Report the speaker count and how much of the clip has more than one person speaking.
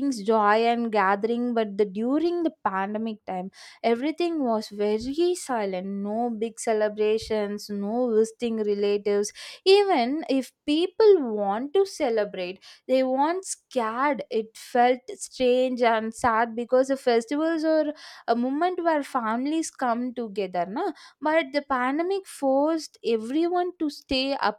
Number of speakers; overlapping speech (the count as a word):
one, no overlap